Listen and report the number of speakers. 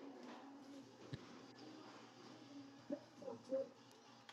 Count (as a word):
zero